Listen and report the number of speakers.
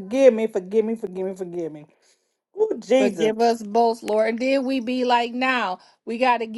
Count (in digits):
2